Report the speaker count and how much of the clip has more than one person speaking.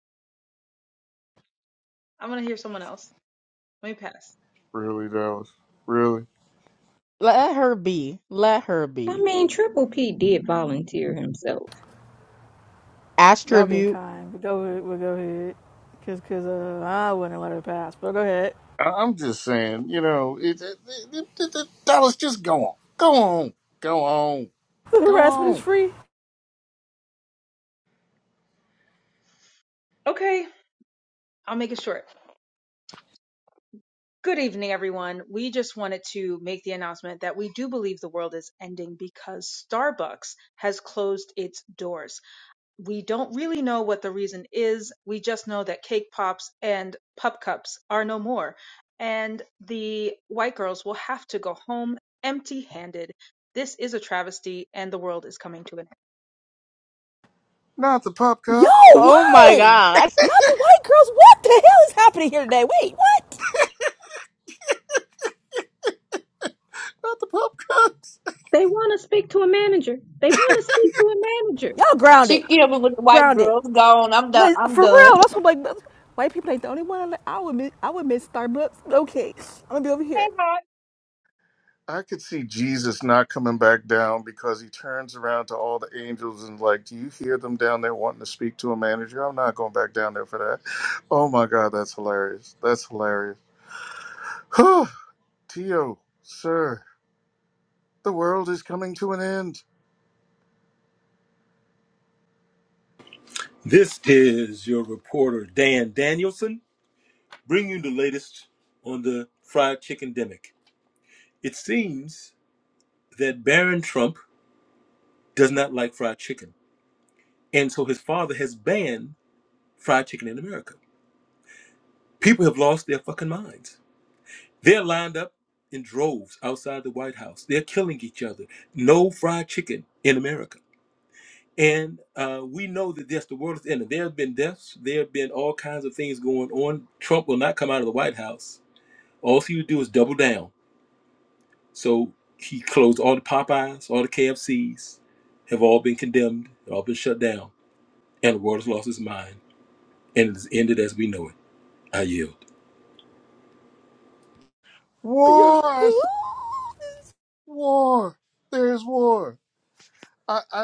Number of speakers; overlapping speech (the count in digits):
7, about 2%